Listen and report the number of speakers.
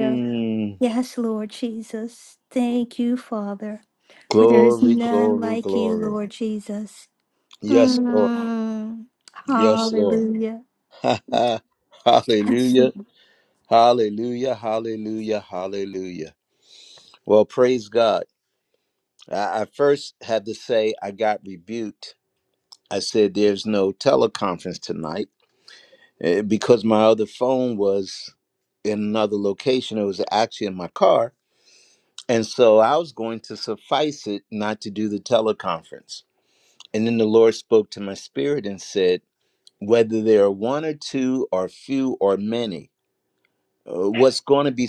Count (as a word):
two